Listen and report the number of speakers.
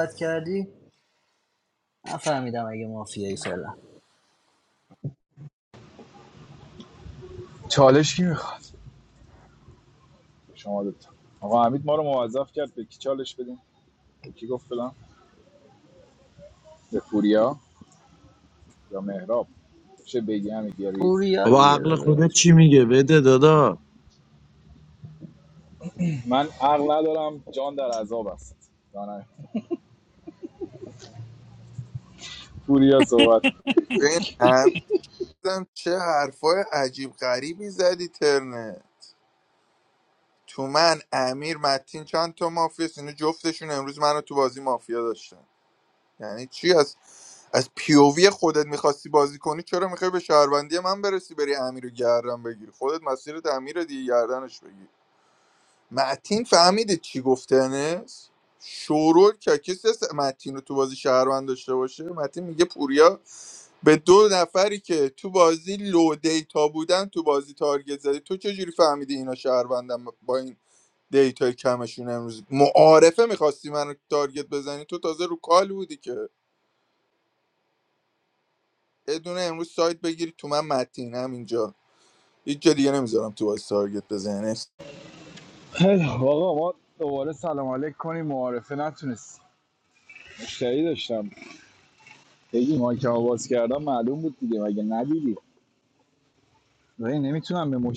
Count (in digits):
4